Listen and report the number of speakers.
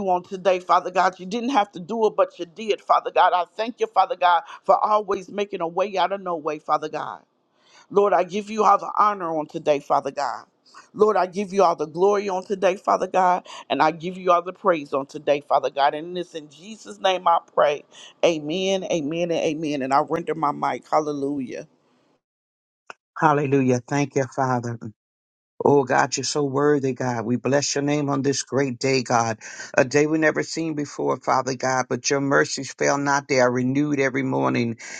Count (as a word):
two